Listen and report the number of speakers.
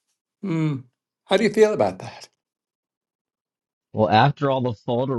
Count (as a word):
two